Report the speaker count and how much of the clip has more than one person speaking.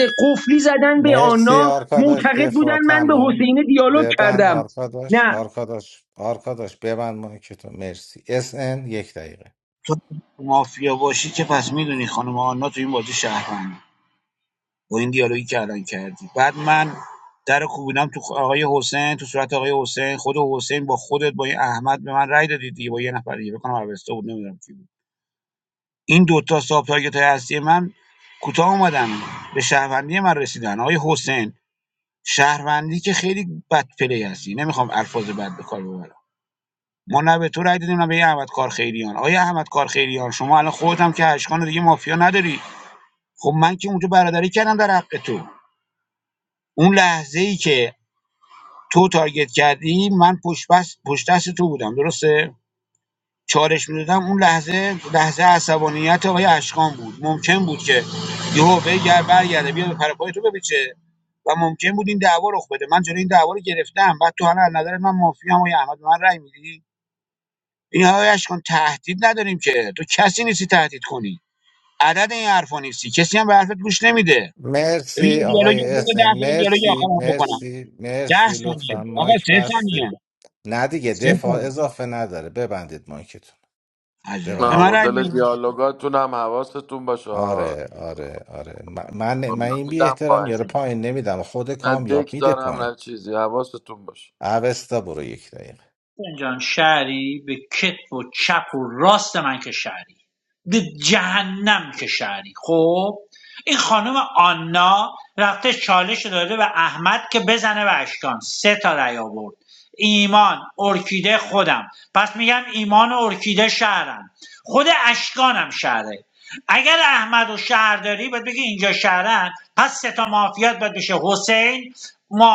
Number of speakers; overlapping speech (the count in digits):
5, about 9%